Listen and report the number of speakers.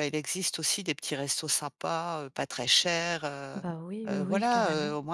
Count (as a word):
two